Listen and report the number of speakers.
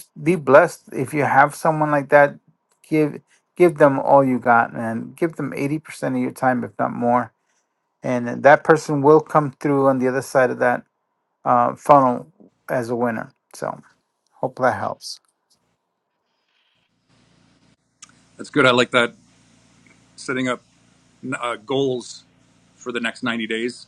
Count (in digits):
2